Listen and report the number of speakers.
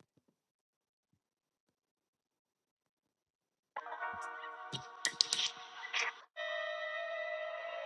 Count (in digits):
0